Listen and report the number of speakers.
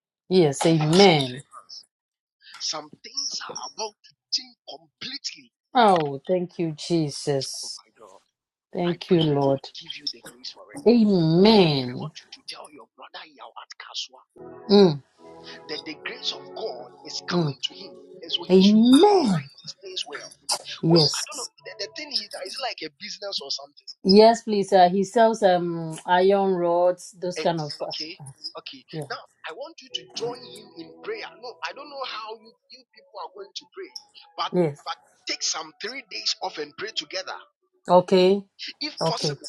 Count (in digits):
2